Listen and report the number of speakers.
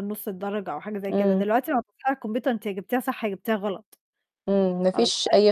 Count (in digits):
2